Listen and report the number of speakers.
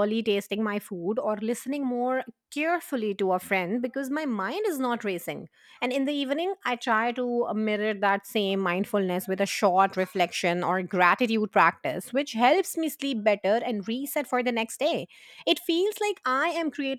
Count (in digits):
1